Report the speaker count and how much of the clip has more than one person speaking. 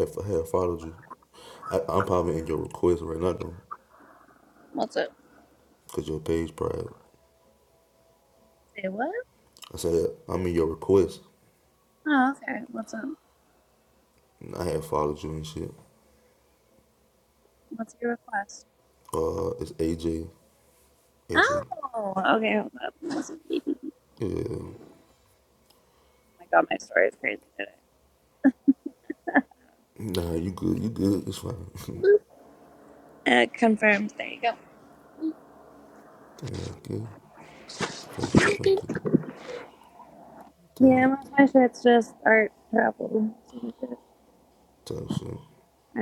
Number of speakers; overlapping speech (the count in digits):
2, about 1%